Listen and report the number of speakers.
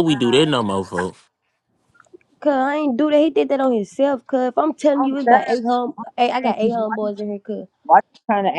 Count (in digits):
3